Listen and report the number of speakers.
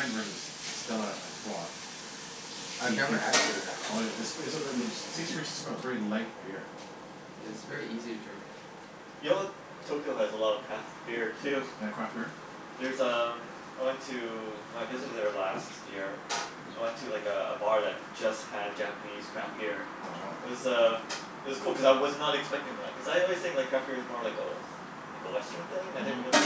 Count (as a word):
three